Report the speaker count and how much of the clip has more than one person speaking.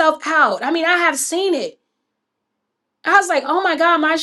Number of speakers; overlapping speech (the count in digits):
1, no overlap